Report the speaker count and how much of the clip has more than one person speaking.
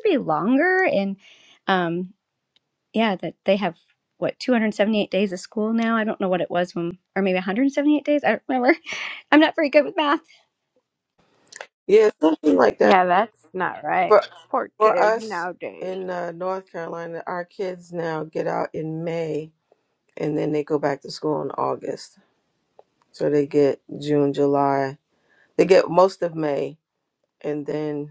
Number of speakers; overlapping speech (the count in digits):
3, about 3%